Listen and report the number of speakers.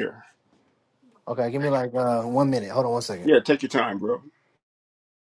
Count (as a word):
two